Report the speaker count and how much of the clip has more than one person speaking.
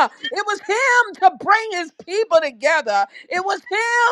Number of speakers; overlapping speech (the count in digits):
1, no overlap